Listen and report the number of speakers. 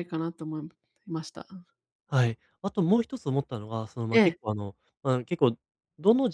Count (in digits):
2